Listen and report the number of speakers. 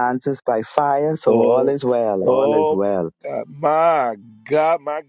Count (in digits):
2